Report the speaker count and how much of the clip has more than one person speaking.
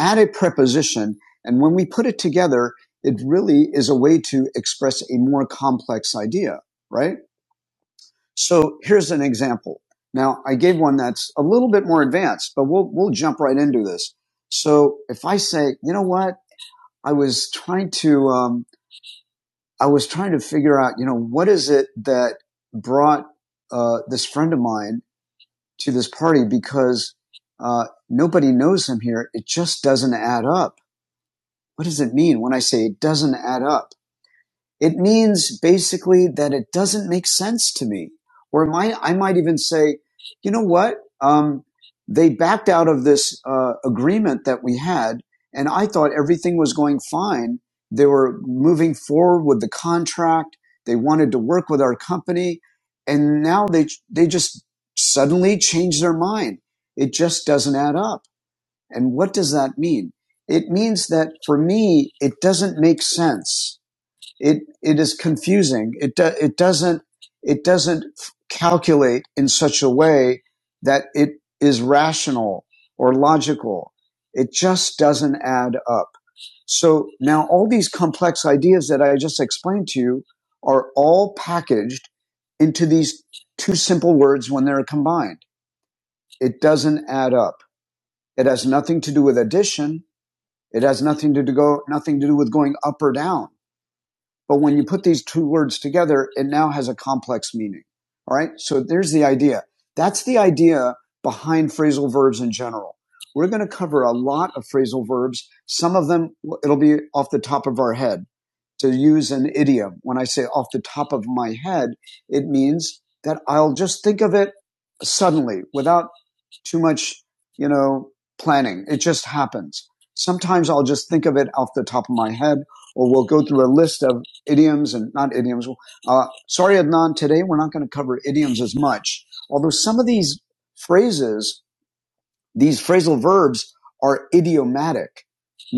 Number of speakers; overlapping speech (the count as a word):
one, no overlap